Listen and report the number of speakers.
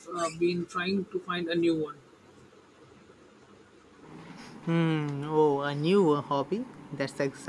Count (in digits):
2